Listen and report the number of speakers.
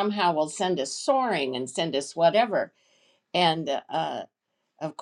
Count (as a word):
one